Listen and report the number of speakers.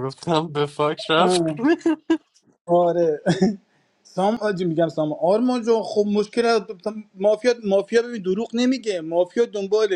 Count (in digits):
2